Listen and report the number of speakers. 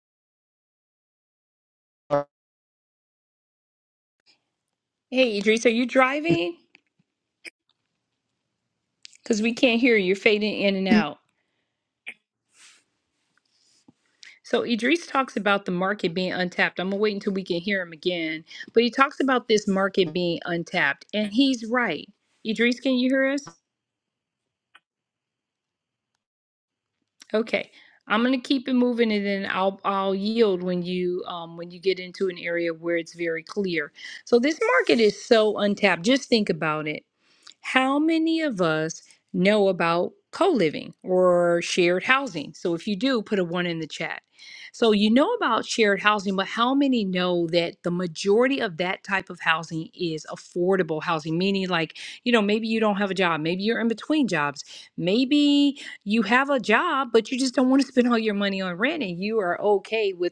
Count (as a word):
one